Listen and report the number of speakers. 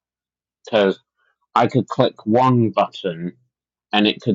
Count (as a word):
one